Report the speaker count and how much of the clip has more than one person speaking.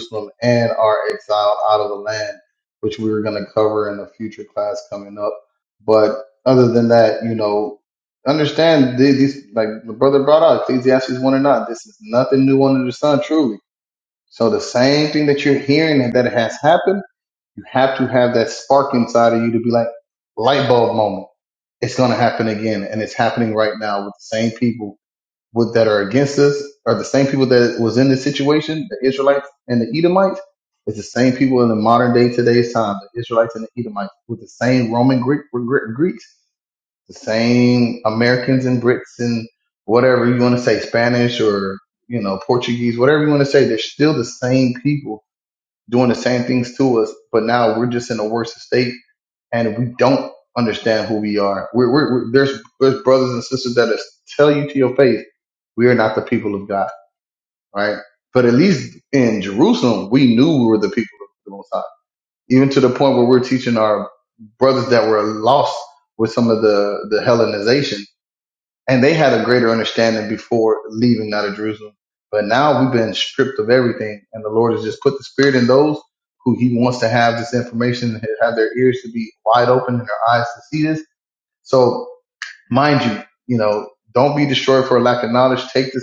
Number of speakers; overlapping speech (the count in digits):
1, no overlap